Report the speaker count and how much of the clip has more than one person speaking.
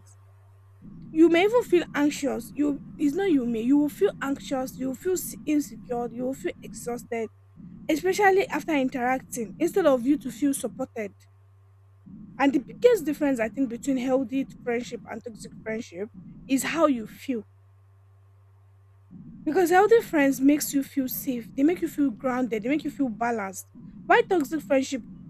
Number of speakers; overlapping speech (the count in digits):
1, no overlap